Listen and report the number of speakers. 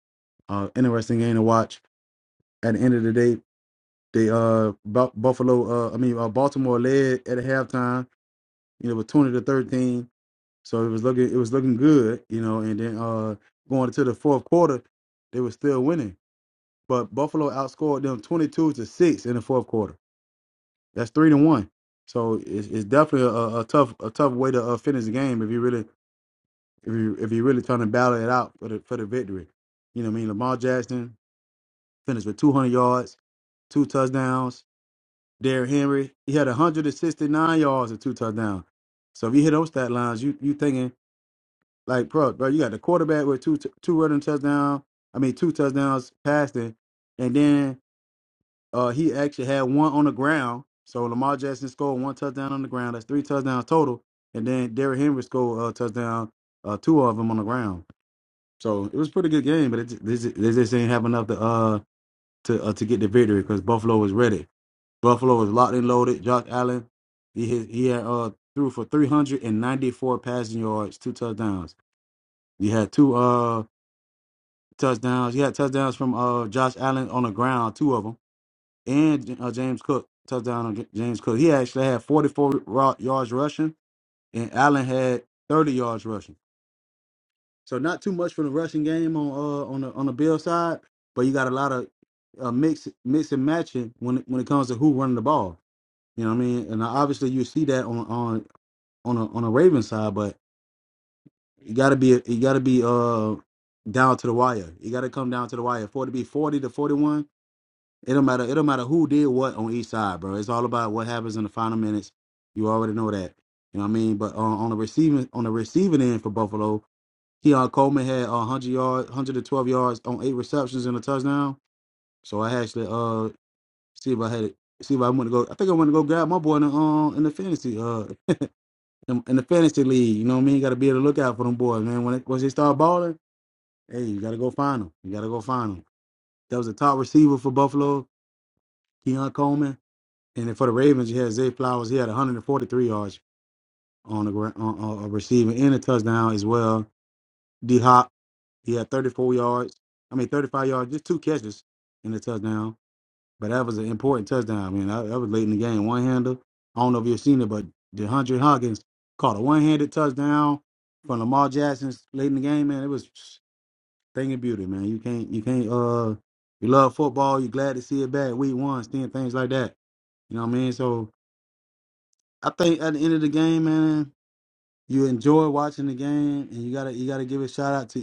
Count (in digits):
1